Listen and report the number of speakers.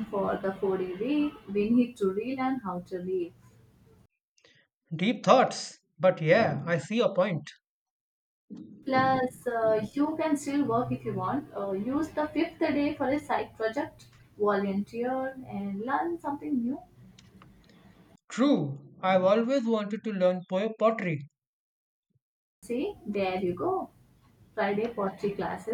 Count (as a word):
two